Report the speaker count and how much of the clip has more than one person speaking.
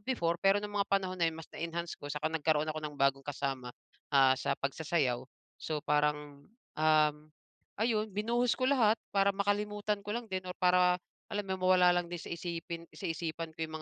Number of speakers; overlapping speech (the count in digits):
1, no overlap